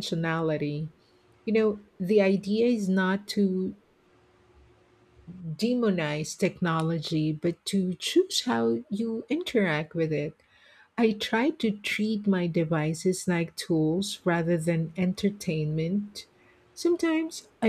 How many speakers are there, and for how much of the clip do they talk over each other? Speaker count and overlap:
one, no overlap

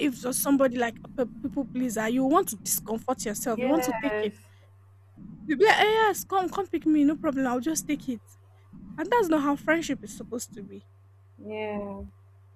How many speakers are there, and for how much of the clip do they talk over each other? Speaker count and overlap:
two, about 6%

